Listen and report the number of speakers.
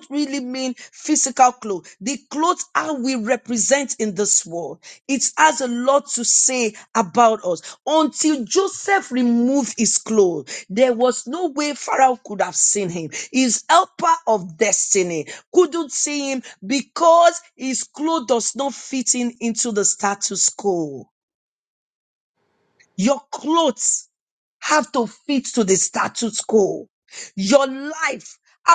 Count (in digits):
1